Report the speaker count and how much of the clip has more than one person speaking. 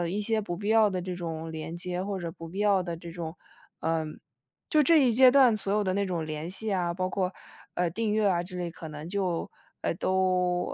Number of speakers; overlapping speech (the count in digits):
1, no overlap